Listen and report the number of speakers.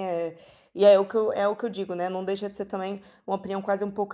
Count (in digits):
1